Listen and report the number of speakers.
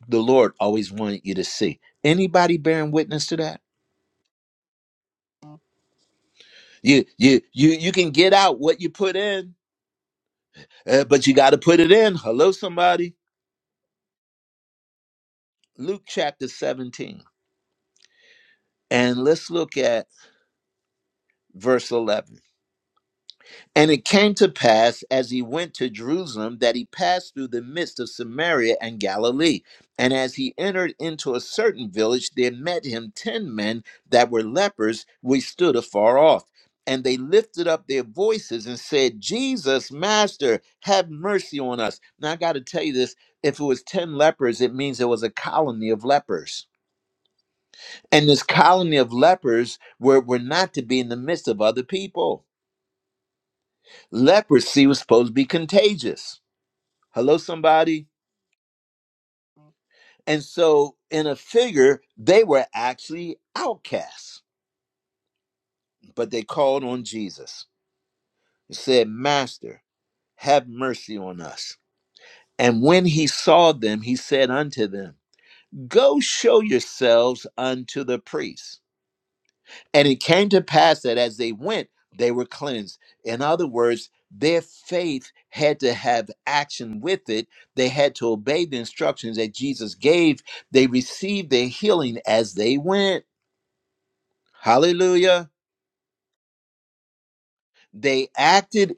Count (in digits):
1